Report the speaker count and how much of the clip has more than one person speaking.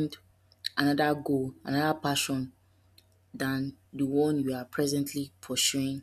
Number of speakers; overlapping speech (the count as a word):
one, no overlap